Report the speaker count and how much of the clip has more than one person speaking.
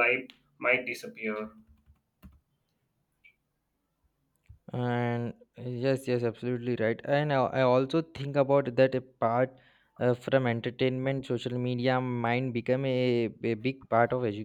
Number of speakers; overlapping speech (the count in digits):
2, no overlap